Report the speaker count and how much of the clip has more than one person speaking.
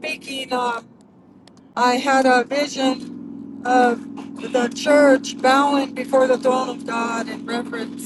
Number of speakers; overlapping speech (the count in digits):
1, no overlap